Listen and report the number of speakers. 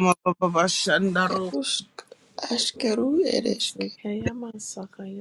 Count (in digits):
3